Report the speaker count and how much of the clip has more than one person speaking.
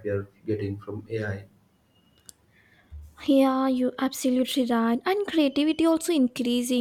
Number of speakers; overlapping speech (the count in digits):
2, no overlap